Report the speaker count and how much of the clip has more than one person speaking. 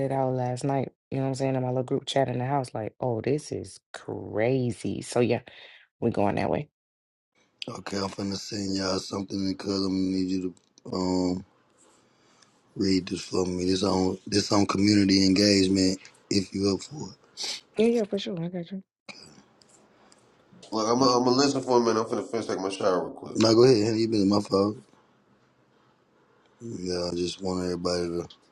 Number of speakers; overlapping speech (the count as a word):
three, under 1%